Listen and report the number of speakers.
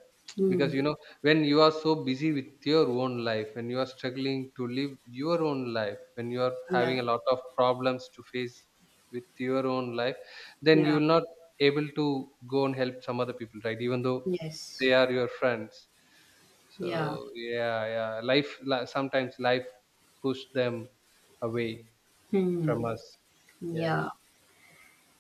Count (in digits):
2